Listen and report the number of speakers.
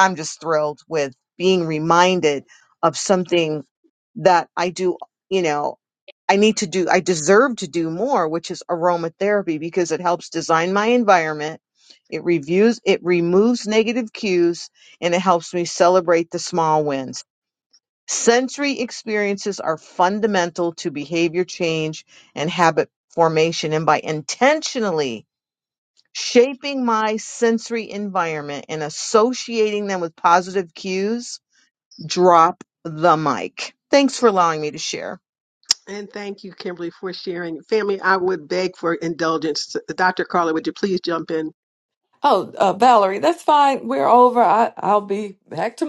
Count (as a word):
three